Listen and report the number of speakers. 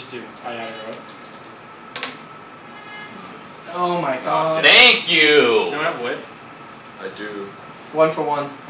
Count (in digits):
4